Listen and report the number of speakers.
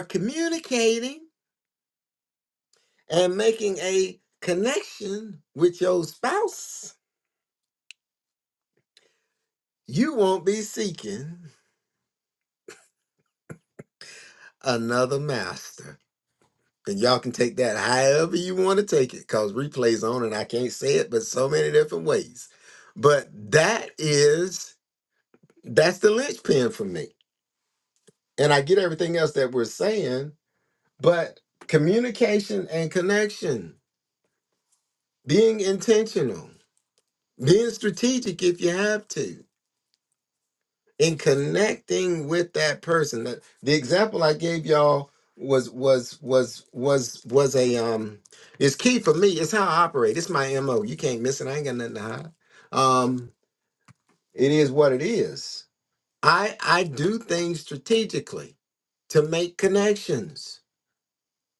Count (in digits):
1